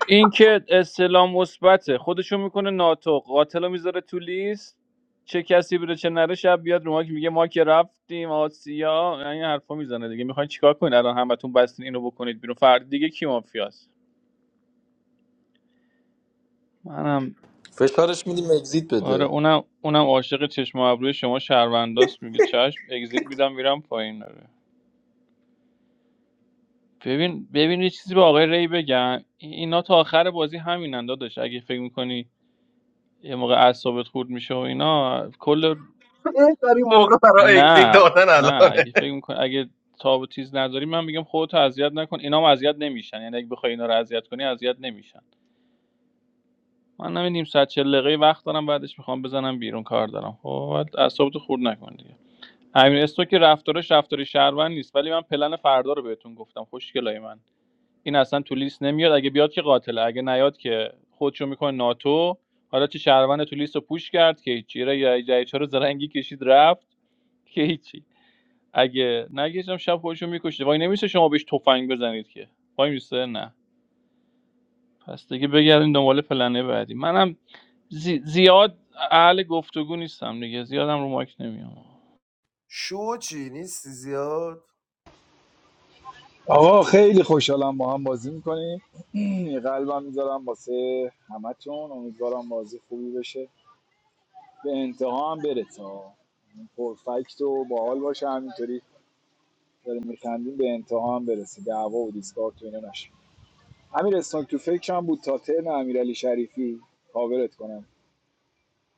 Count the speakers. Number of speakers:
five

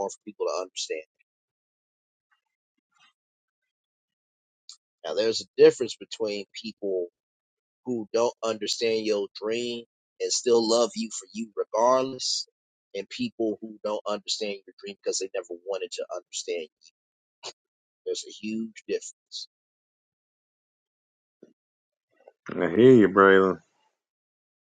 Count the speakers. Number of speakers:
two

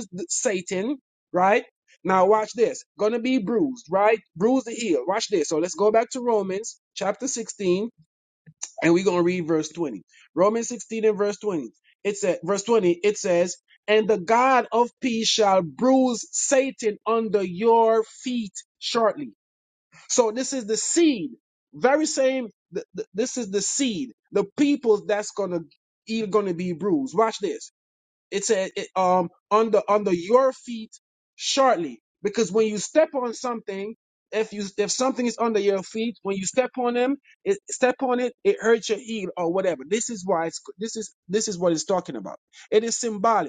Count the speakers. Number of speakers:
one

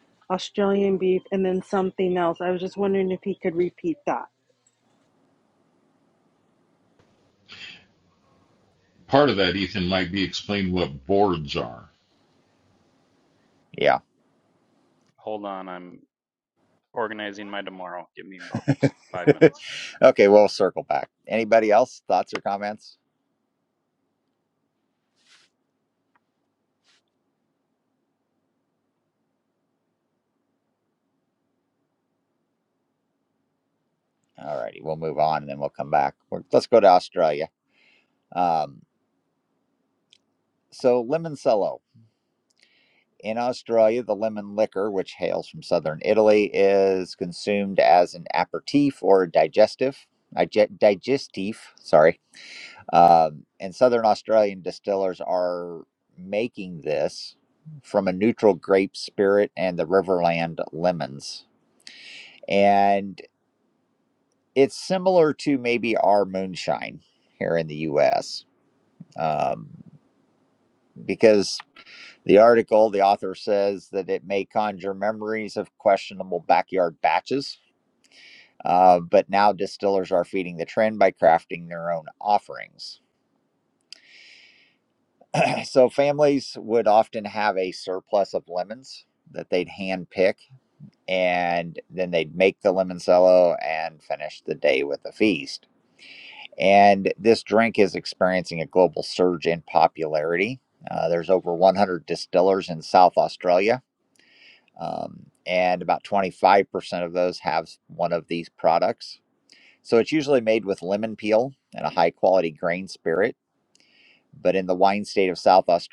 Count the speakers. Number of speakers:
four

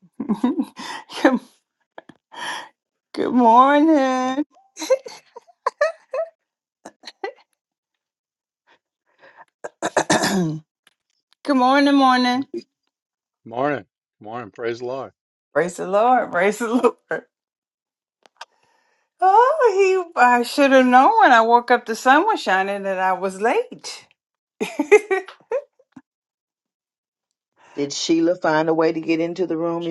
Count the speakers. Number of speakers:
three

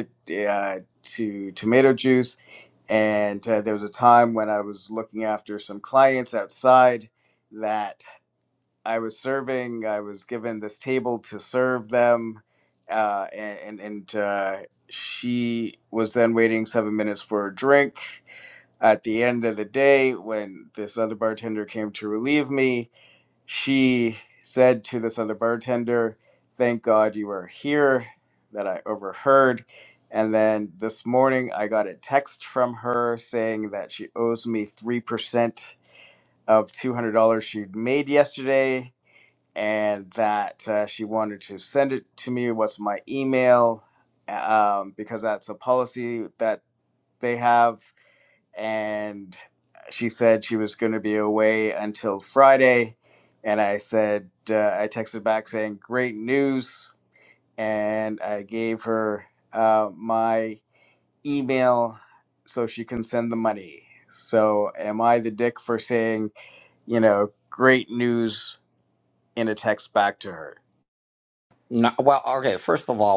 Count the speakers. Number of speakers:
two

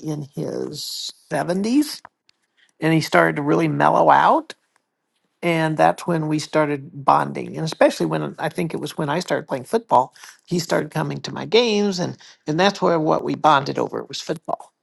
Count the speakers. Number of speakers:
one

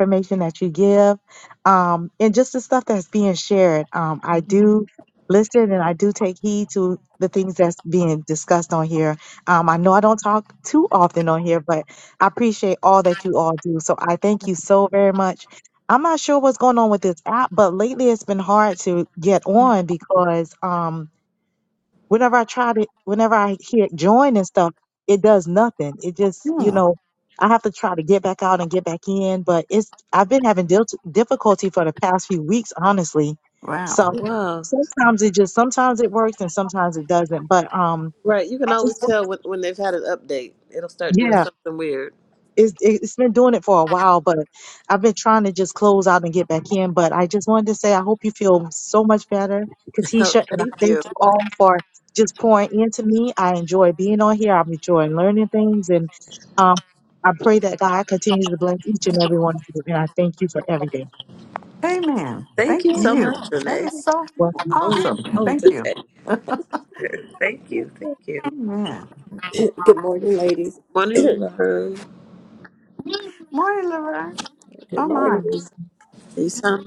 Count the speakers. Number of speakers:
four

